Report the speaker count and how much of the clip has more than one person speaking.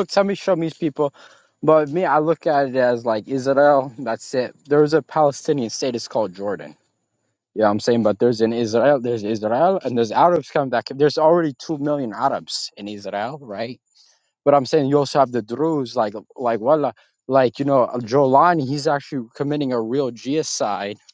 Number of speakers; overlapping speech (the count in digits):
1, no overlap